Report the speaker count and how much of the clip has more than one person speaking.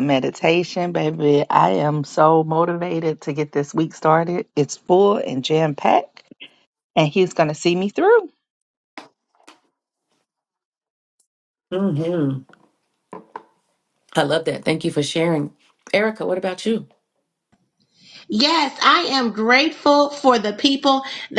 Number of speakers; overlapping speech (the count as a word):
three, no overlap